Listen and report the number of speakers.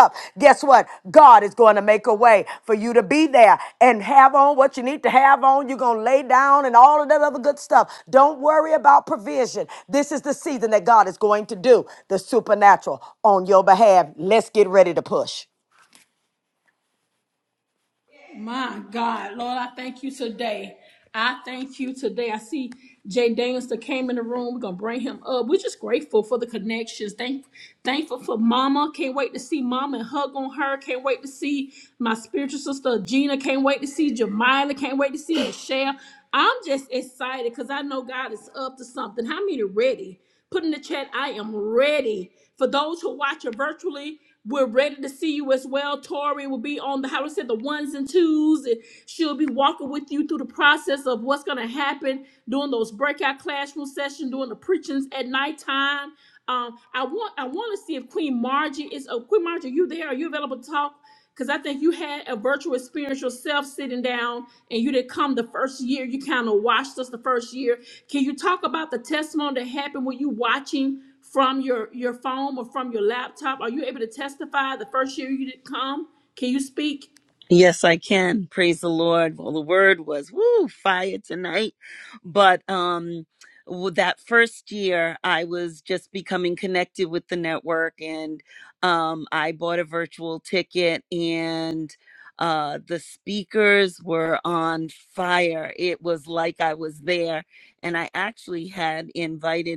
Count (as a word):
three